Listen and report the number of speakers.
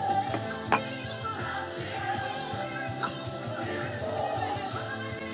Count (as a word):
zero